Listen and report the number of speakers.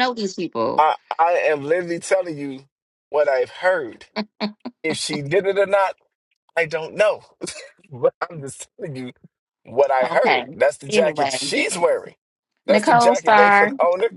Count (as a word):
two